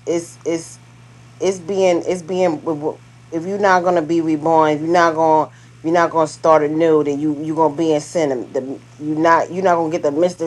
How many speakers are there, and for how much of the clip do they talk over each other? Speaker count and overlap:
1, no overlap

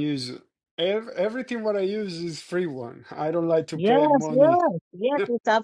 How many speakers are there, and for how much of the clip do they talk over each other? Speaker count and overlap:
2, about 15%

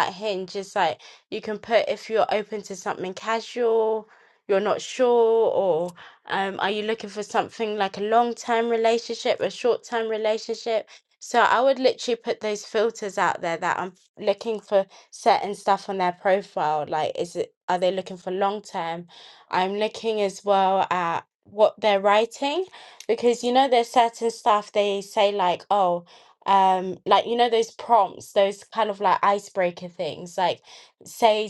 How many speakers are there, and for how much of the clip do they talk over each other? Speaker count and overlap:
1, no overlap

